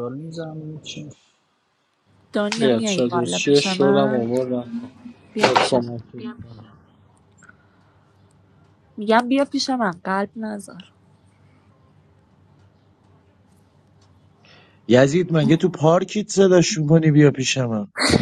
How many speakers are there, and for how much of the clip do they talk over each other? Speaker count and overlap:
4, about 13%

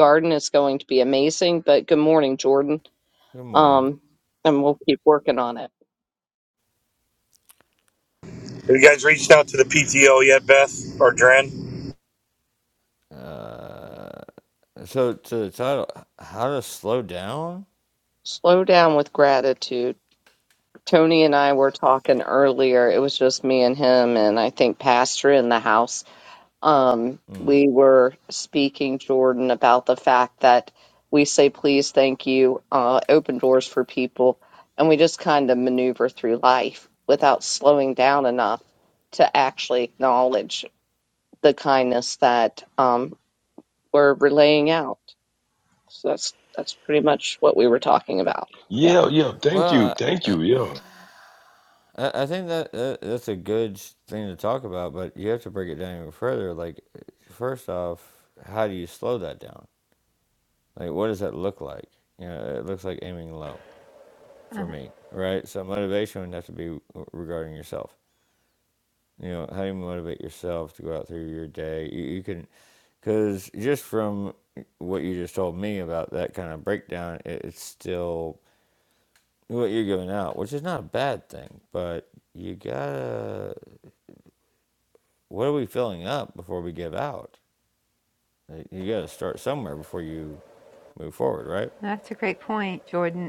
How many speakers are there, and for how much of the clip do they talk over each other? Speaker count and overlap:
5, about 1%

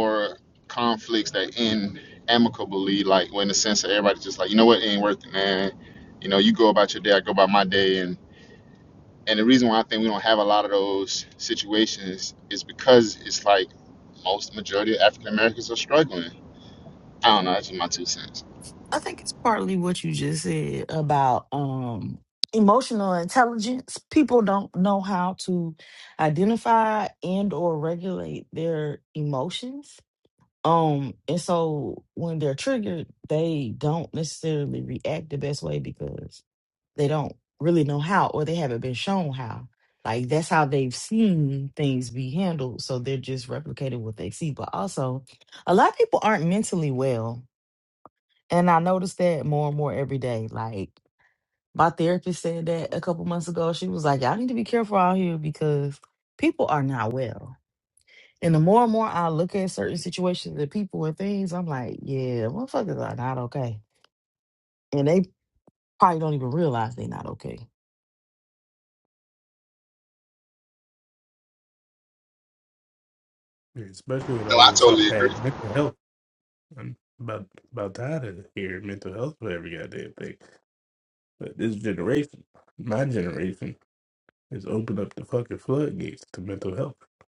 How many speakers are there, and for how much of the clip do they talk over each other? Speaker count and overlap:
3, about 1%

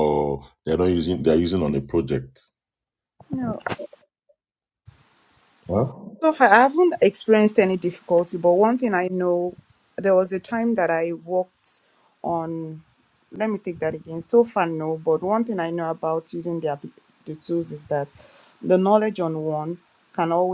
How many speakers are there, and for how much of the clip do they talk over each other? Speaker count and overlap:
2, no overlap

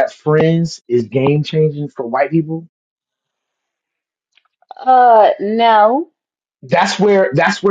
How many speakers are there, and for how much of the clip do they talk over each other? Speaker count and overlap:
2, no overlap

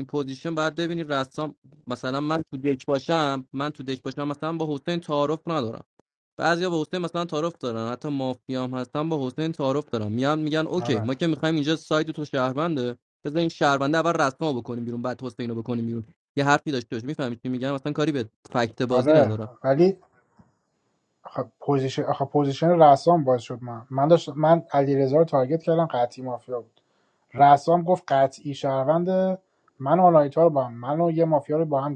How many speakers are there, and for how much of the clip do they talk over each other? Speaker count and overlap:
2, about 3%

